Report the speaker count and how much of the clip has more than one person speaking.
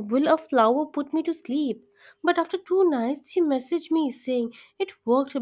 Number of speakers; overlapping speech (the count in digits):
1, no overlap